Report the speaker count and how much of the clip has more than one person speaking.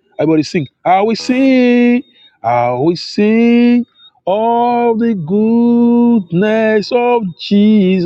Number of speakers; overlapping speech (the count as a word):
one, no overlap